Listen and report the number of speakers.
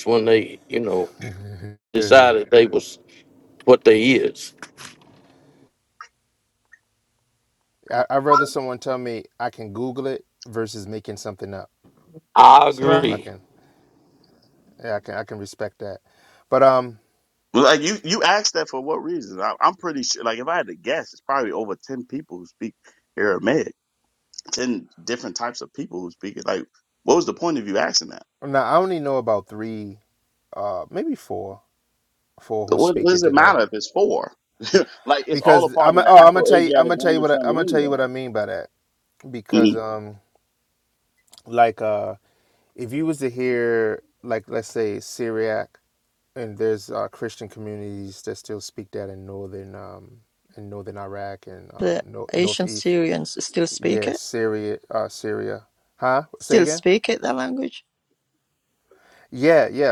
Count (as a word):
four